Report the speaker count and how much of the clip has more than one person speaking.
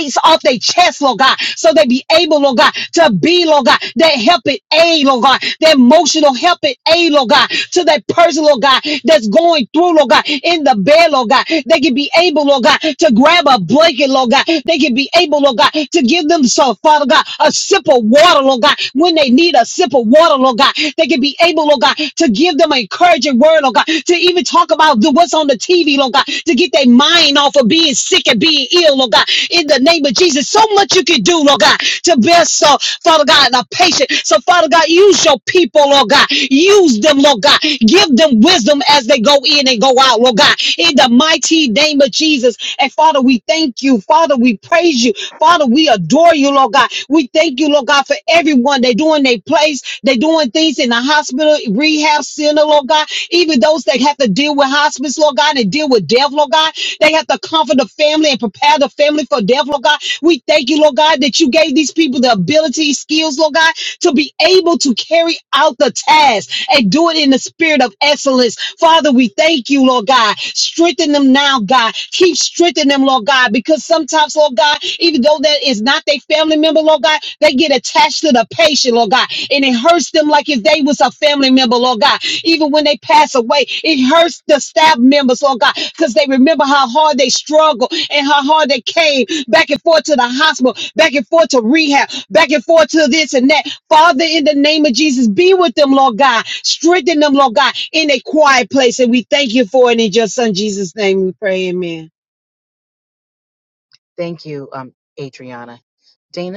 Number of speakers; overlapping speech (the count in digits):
2, no overlap